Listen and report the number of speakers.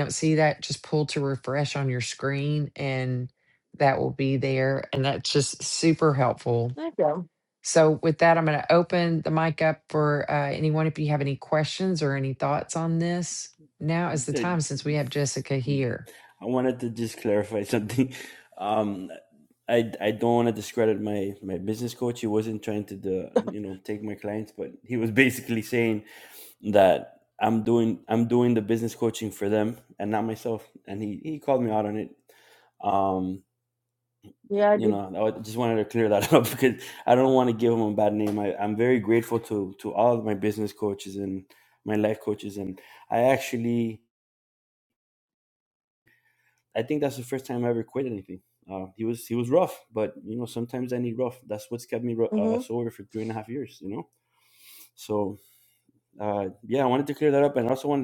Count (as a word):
three